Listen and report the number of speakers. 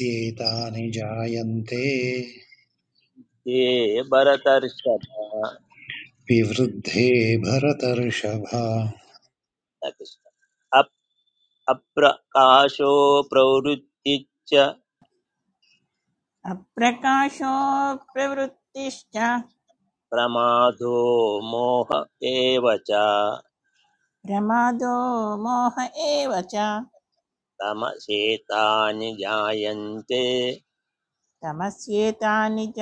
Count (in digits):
3